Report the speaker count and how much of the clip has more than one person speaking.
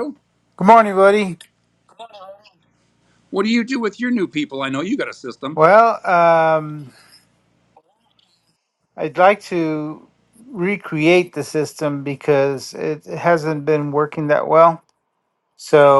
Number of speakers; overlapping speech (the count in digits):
2, no overlap